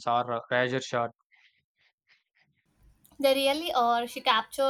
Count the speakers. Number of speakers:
2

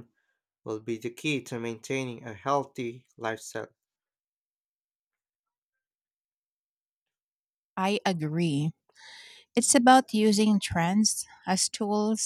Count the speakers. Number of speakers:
2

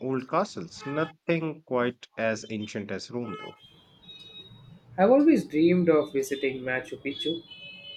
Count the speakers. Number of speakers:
2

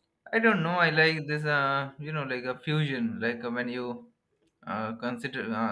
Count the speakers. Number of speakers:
1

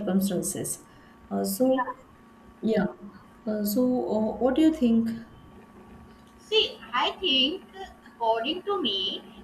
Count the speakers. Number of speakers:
2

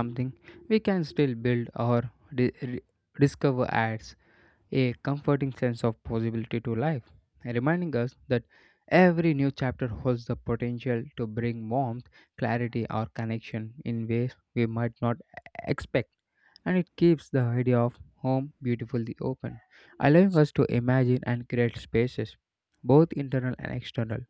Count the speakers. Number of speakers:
1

